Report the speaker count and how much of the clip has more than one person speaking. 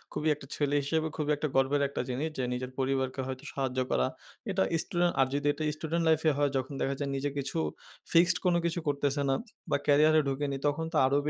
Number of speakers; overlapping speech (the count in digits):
1, no overlap